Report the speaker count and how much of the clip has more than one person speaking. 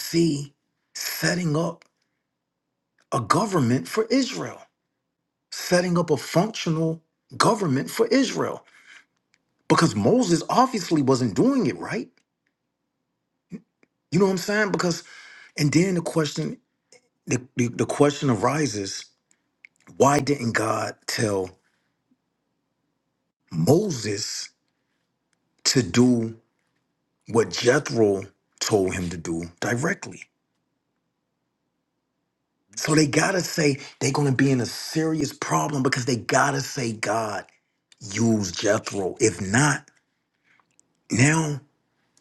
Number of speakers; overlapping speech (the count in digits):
1, no overlap